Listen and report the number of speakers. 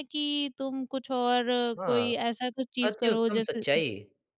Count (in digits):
2